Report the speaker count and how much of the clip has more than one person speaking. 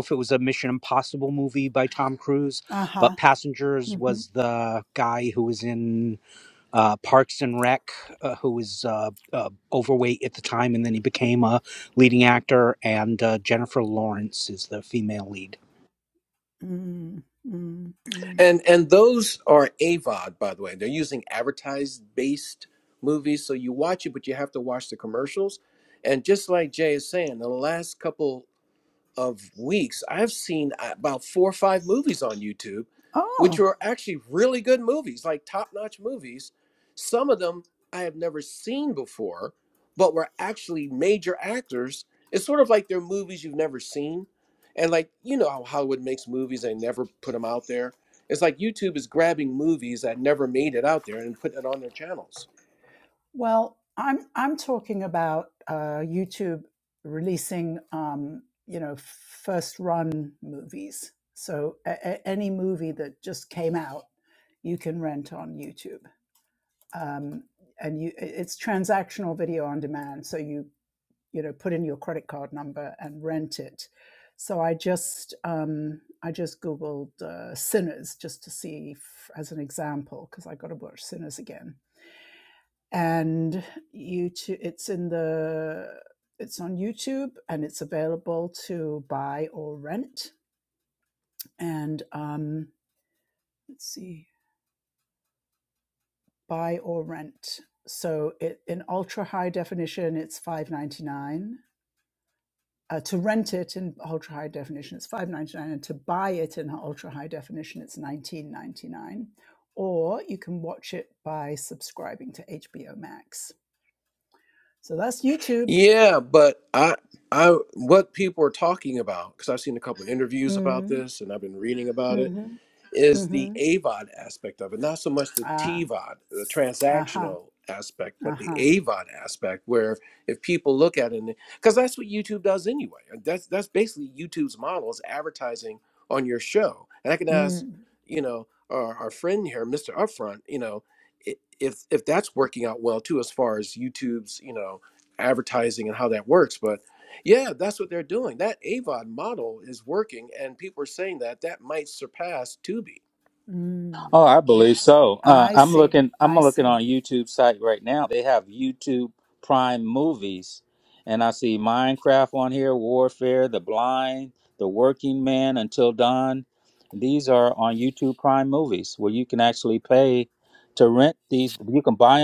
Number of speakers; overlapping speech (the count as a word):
four, about 3%